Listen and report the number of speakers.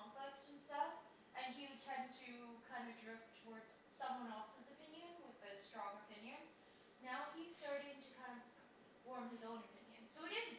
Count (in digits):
1